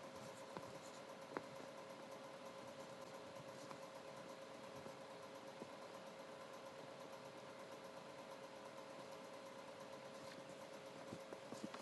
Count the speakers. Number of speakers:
0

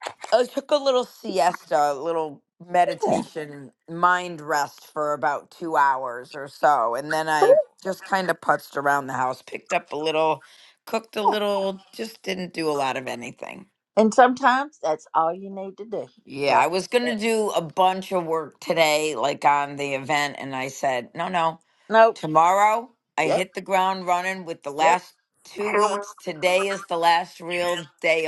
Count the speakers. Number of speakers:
2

